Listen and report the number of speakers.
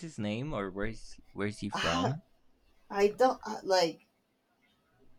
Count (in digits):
2